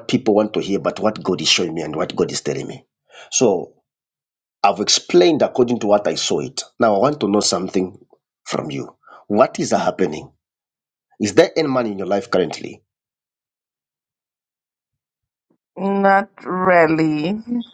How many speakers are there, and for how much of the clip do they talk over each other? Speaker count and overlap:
two, no overlap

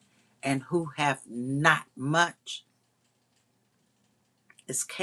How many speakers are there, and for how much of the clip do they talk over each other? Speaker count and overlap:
one, no overlap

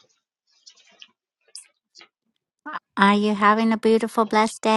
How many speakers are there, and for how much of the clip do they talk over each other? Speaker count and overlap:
one, no overlap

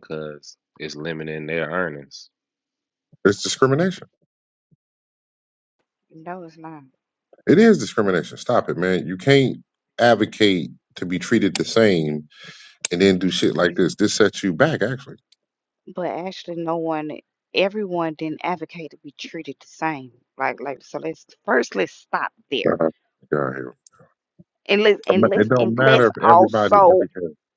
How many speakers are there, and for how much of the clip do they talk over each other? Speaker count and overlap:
three, about 8%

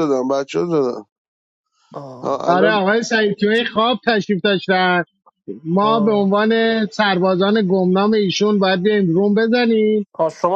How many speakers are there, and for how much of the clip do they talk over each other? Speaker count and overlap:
three, about 10%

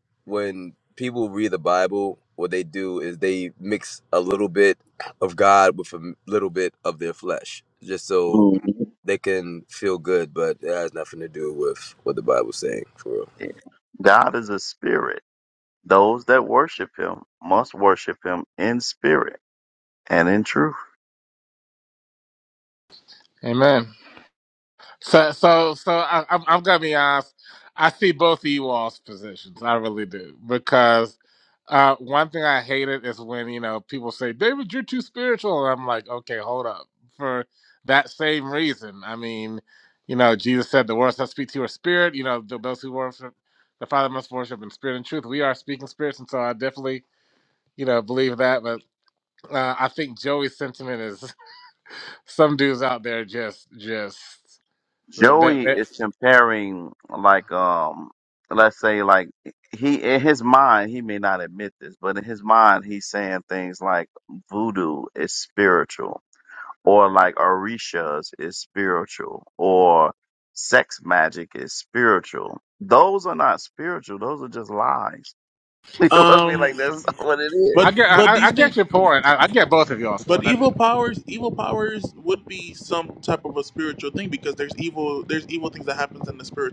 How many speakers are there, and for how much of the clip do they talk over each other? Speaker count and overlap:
four, about 4%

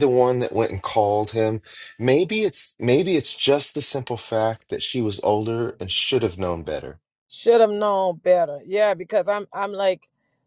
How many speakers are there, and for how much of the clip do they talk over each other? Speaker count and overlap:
two, no overlap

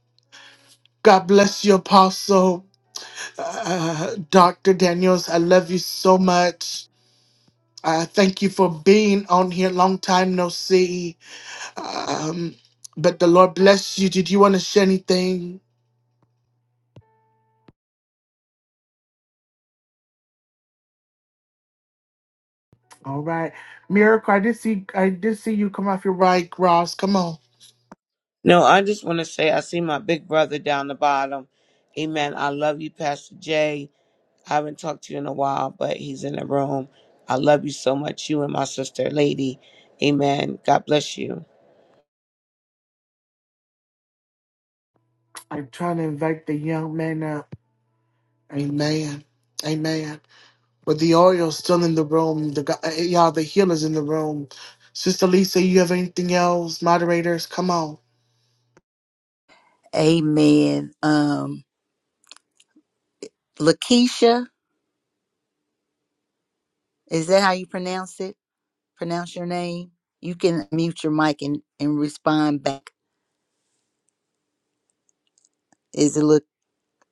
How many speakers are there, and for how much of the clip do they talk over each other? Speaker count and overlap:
three, no overlap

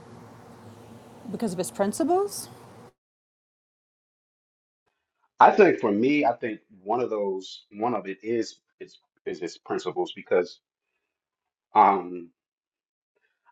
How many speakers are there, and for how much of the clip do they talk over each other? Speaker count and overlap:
two, no overlap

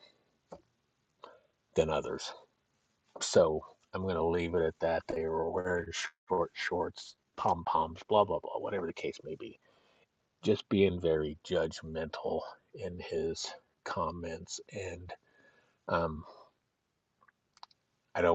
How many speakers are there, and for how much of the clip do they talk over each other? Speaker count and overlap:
one, no overlap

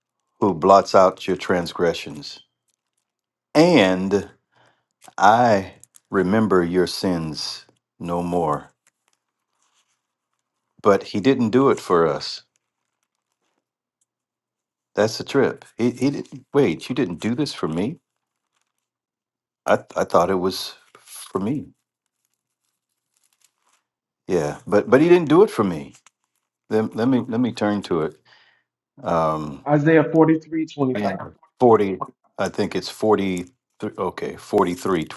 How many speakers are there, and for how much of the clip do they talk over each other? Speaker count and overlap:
two, about 1%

